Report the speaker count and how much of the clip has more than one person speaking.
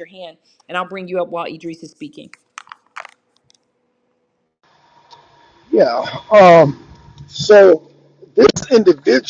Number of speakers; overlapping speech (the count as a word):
two, no overlap